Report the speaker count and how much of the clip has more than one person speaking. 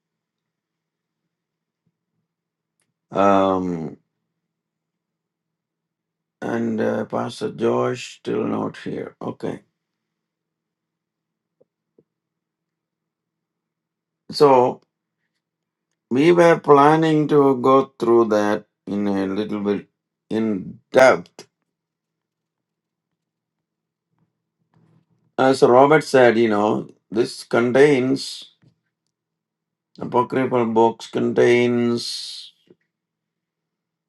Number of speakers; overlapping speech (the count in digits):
1, no overlap